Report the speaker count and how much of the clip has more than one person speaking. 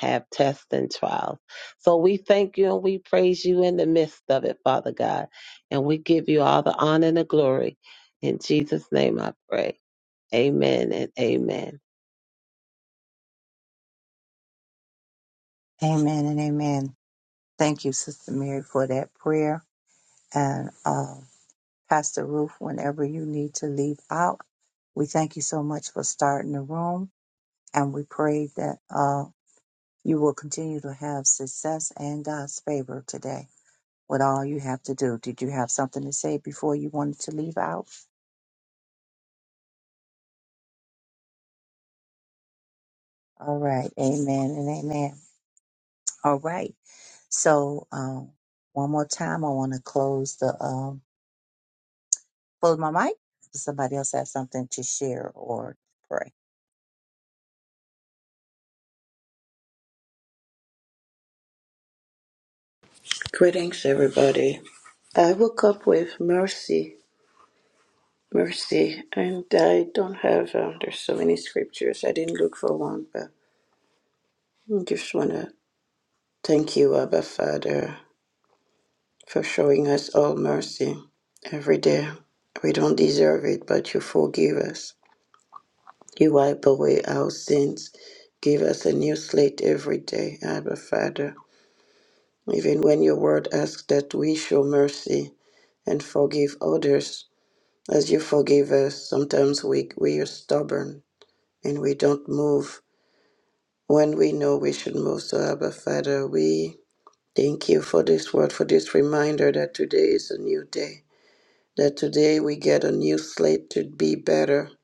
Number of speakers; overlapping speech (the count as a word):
three, no overlap